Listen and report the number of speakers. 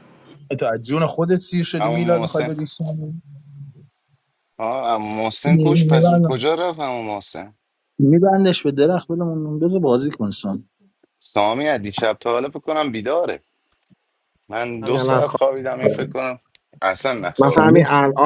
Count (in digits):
3